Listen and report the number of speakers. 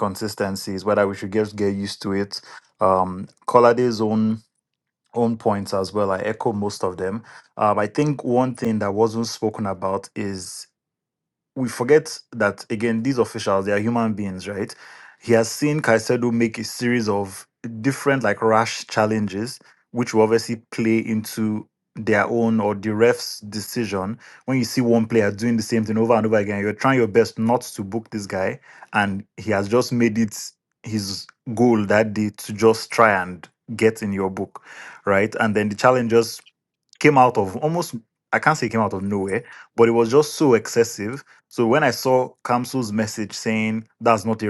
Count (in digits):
1